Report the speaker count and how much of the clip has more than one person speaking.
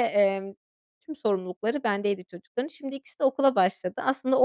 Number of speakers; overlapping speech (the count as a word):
one, no overlap